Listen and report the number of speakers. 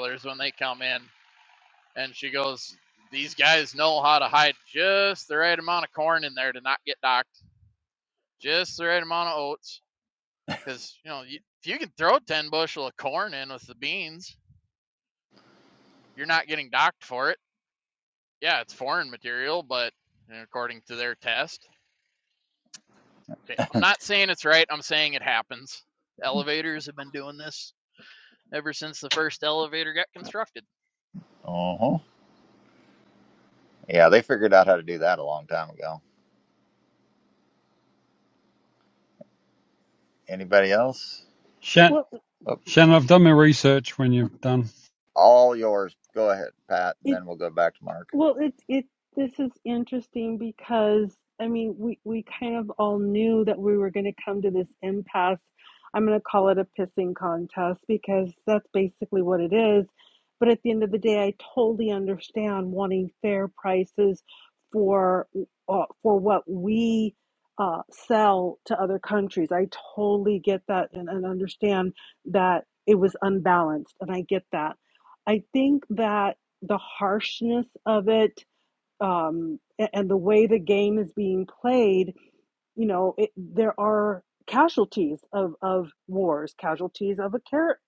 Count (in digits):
4